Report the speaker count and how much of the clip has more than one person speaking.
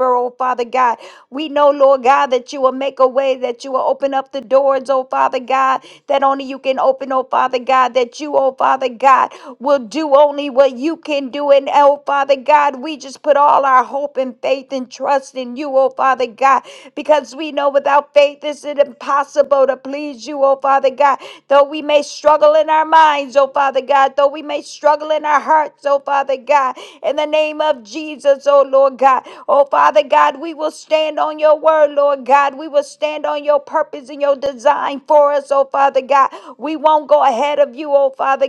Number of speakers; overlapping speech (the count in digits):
1, no overlap